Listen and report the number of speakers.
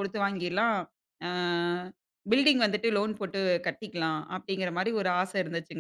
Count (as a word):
one